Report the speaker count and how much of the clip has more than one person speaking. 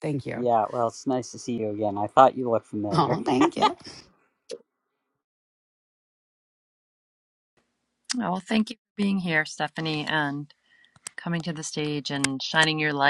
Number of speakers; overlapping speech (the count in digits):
3, about 2%